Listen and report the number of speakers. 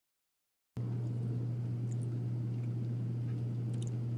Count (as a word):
zero